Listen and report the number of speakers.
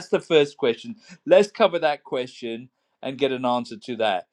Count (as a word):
one